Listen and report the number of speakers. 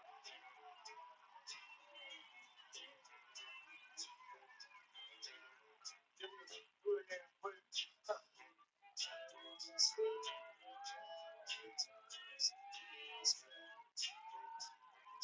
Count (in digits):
0